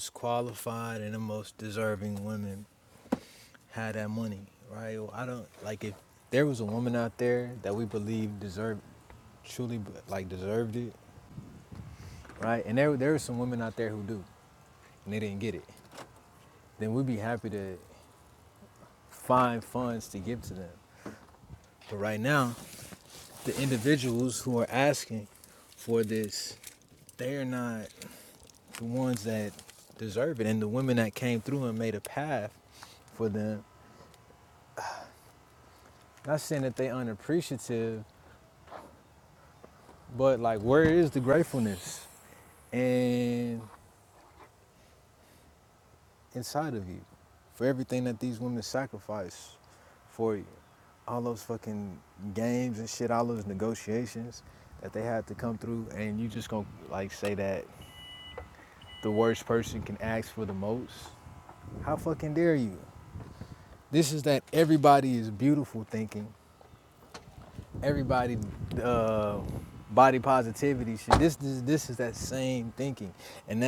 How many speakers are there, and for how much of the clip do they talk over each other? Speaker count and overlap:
one, no overlap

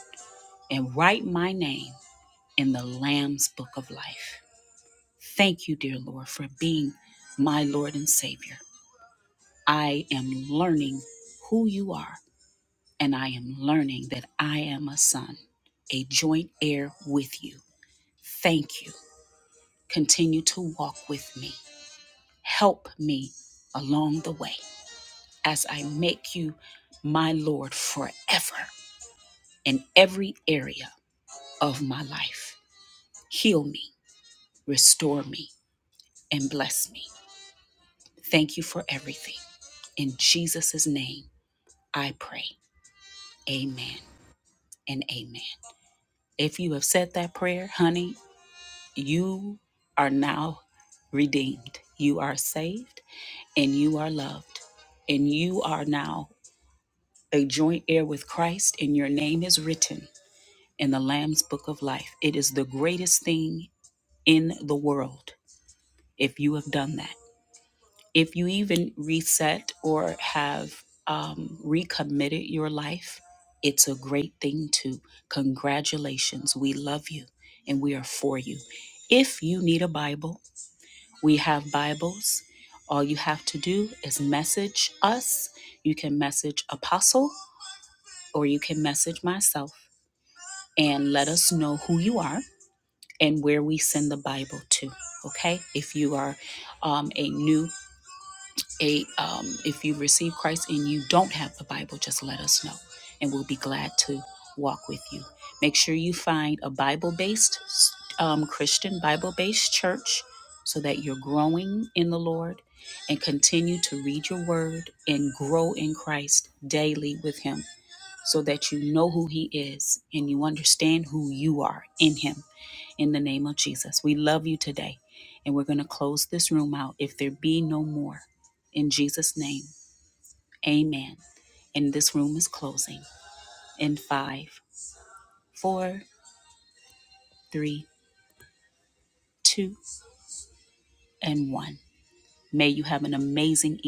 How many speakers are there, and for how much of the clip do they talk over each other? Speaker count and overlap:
one, no overlap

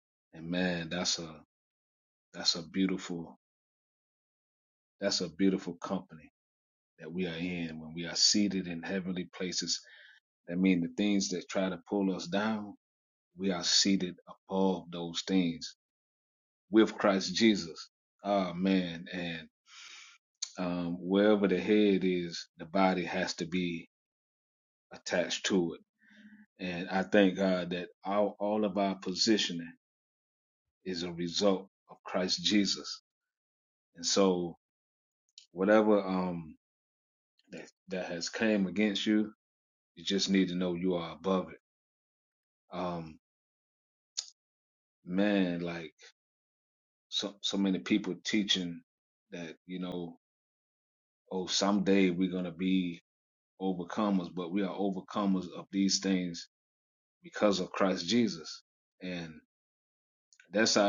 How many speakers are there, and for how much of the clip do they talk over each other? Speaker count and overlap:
one, no overlap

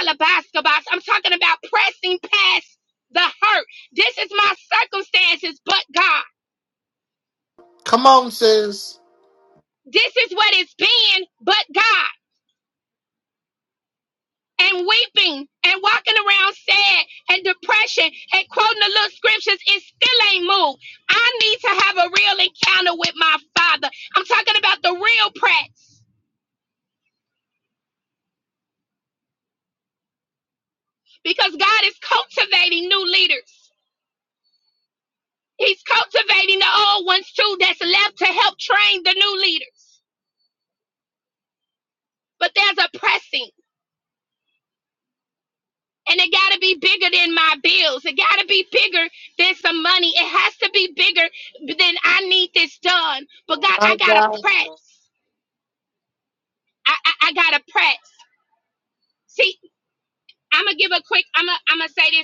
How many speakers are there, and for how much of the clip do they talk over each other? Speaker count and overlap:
two, about 1%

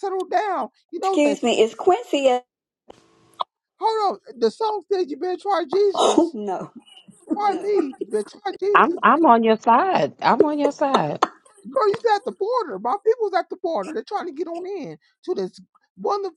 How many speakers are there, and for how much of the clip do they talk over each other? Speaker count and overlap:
three, about 5%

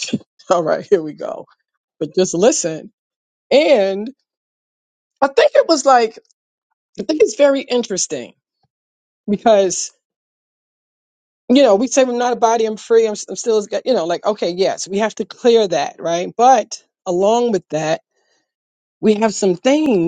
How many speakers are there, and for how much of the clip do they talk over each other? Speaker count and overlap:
one, no overlap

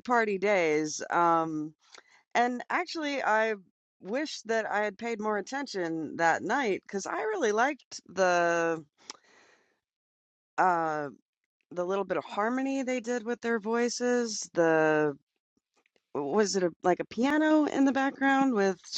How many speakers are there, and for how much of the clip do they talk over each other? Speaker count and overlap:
one, no overlap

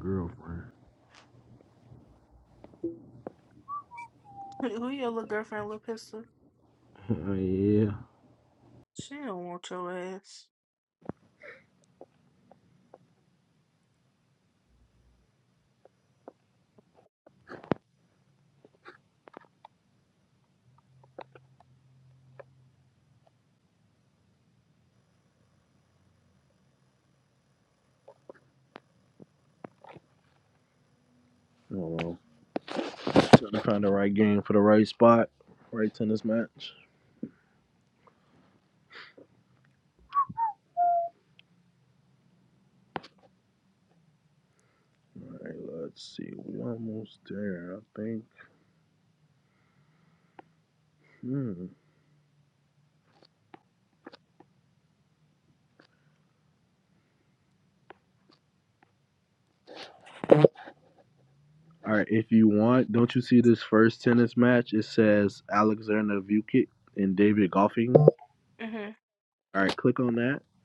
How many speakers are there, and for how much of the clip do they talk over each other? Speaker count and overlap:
three, no overlap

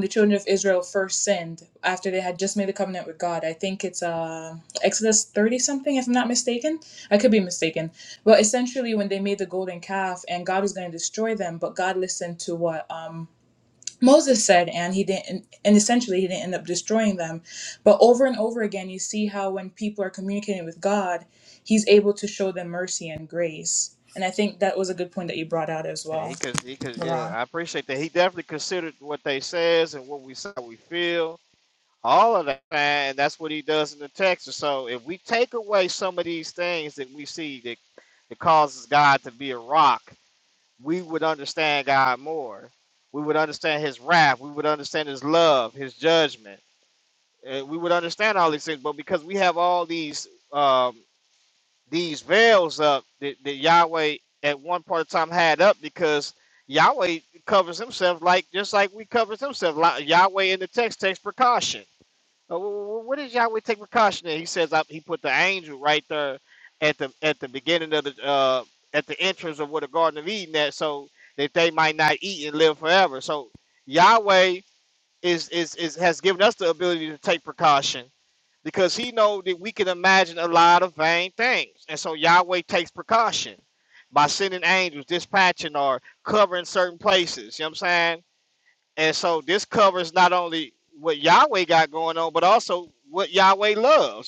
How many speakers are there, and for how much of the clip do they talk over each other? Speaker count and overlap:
two, about 1%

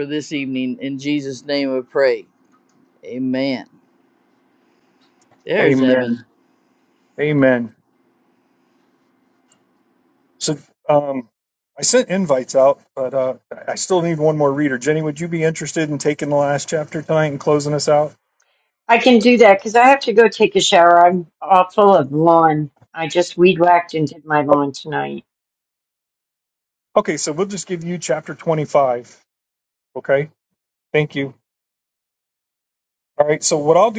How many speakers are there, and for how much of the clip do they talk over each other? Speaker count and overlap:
three, about 2%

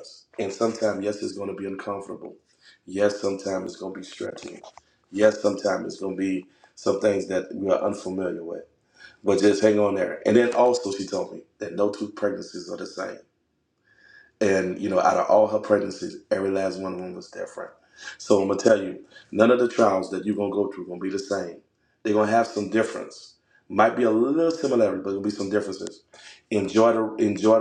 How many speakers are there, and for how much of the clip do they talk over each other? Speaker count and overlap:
one, no overlap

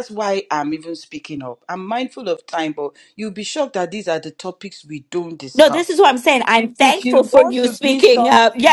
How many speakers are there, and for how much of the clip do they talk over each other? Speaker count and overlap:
two, about 26%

